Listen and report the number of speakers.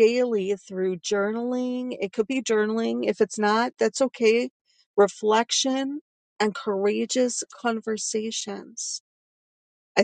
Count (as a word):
one